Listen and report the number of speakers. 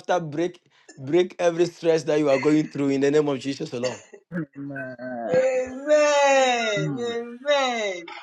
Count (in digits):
3